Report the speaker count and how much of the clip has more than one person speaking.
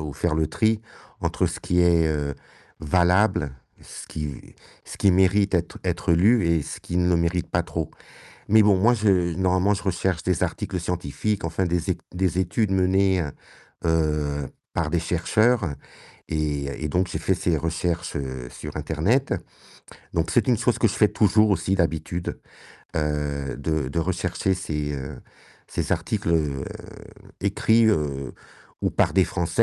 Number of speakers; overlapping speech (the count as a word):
one, no overlap